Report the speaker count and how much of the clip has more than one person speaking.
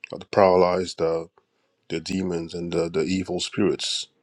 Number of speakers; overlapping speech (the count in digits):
1, no overlap